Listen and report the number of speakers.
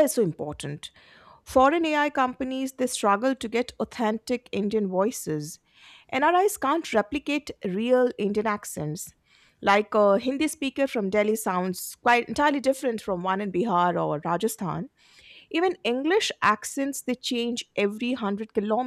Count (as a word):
one